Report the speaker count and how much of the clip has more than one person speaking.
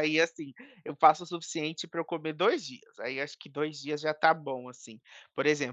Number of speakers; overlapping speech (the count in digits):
1, no overlap